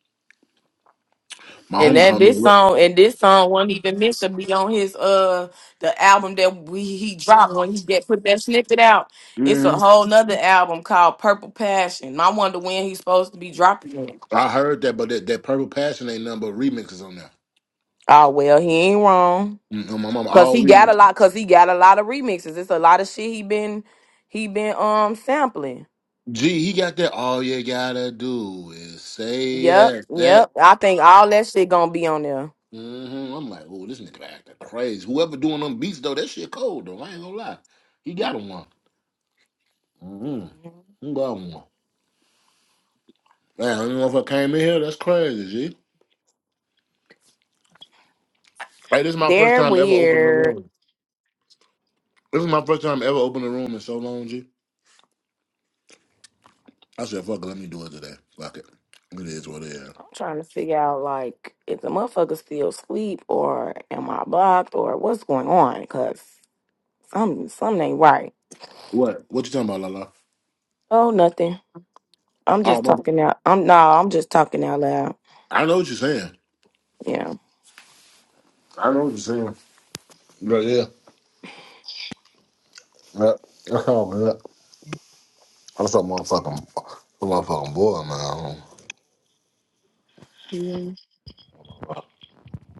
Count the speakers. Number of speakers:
2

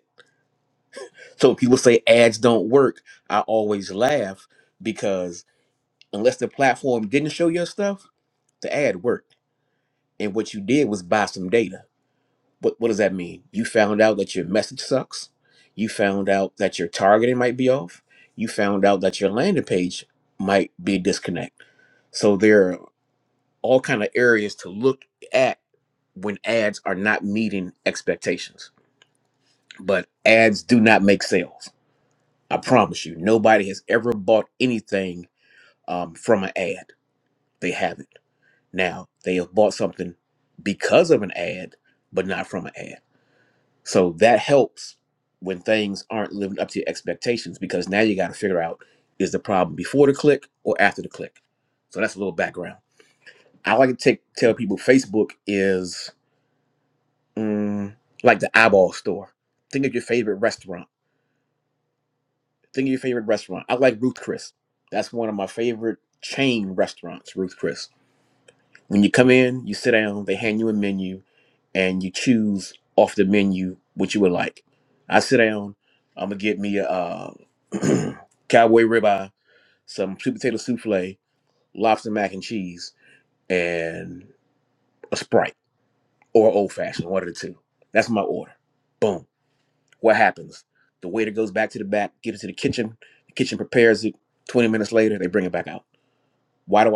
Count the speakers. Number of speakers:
1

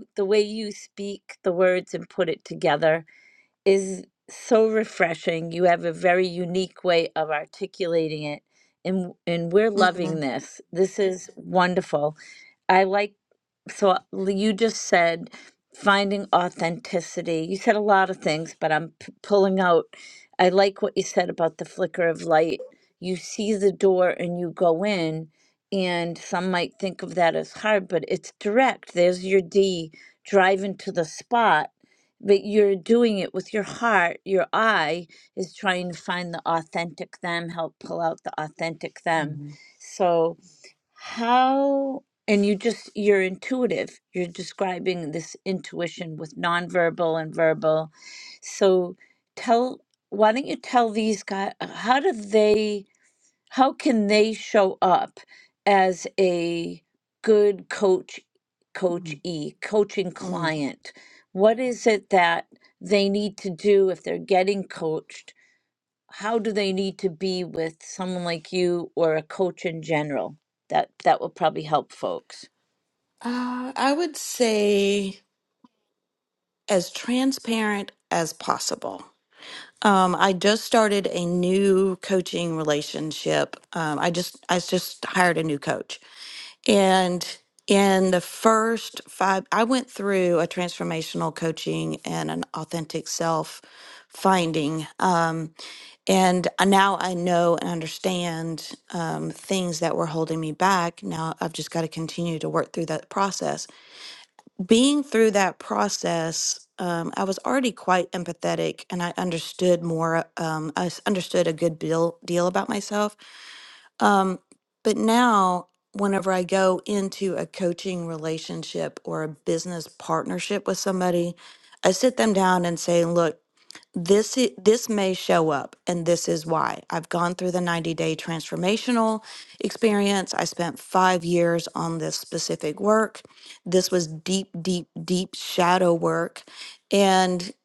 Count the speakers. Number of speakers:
2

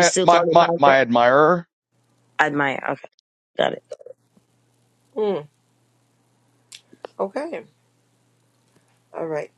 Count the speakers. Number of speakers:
3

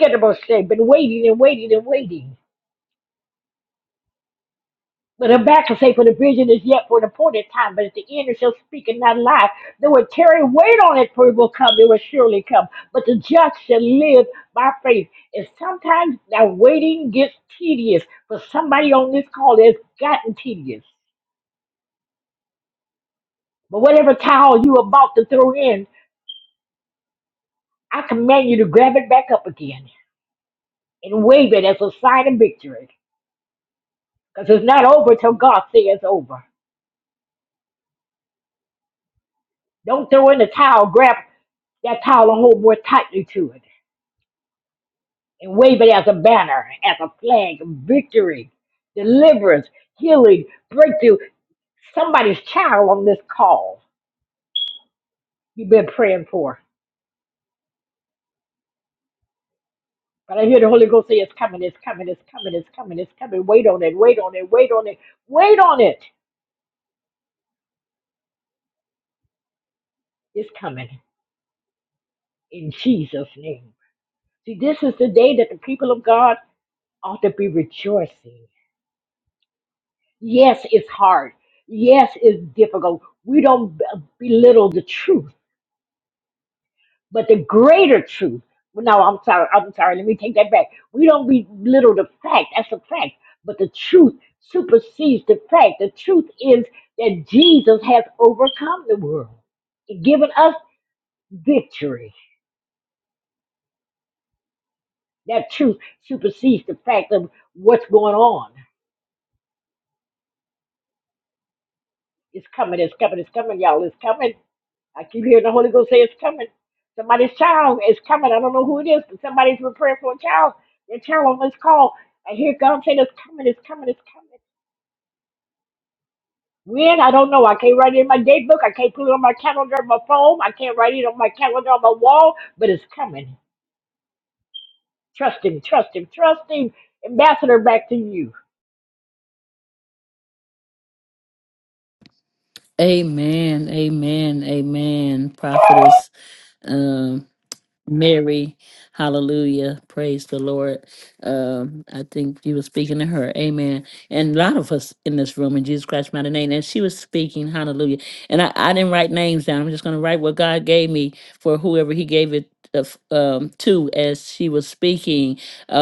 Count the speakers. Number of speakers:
2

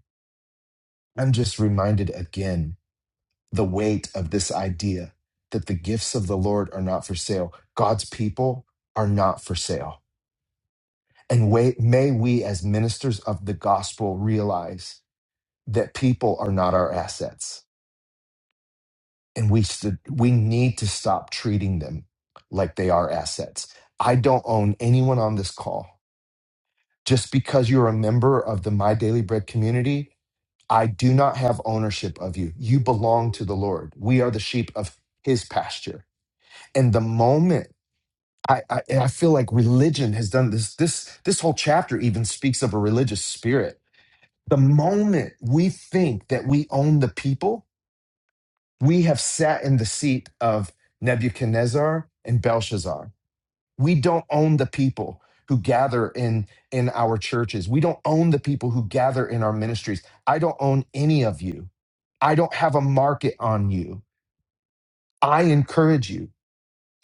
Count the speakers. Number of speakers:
1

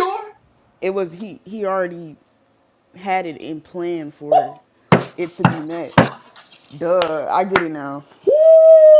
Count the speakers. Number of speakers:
2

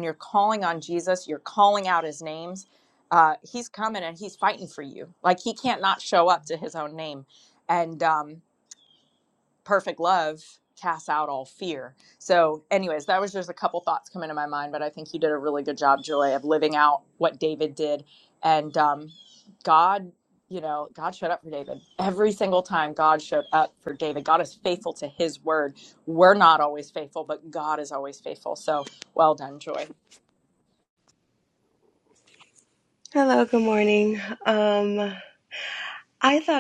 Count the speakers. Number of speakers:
2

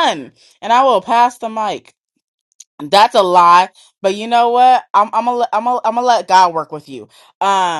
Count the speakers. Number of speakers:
1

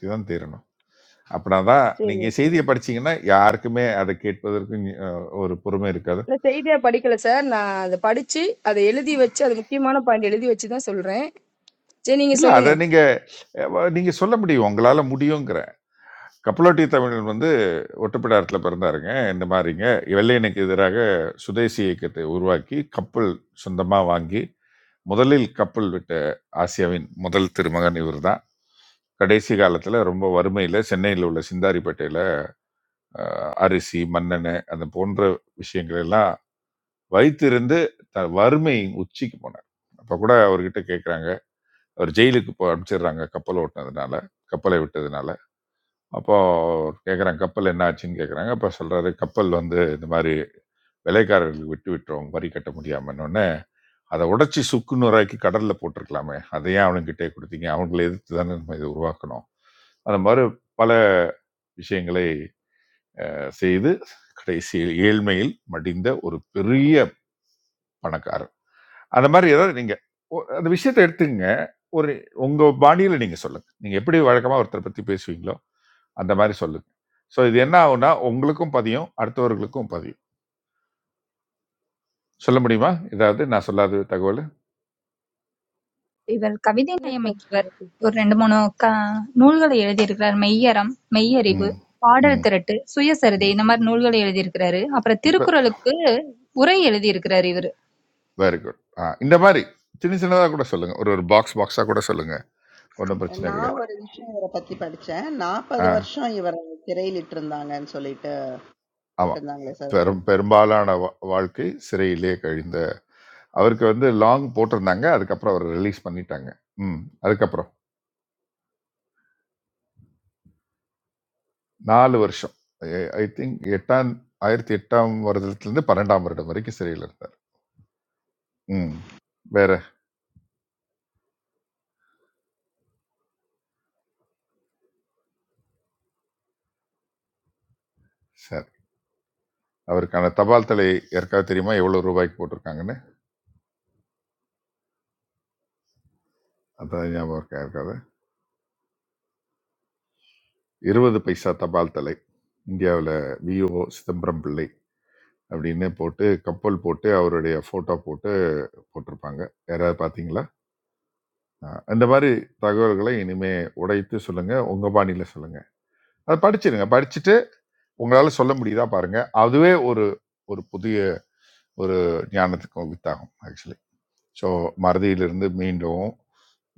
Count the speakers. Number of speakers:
4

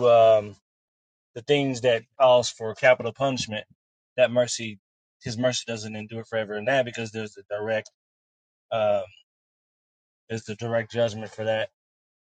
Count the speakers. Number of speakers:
1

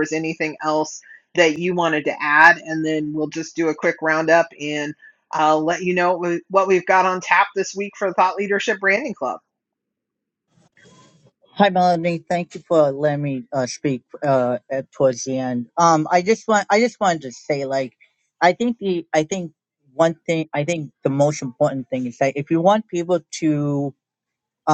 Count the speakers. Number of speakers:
2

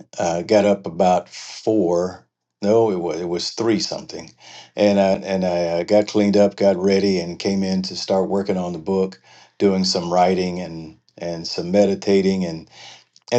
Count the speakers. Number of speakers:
1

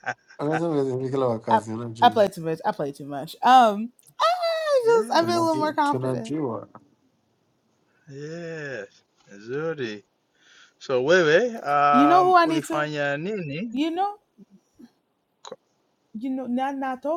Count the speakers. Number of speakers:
3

